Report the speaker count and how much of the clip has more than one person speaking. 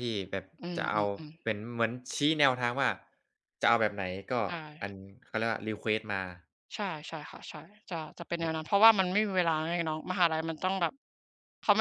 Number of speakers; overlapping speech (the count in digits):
2, about 3%